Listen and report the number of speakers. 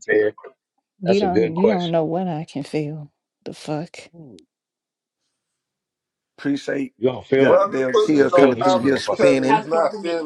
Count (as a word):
four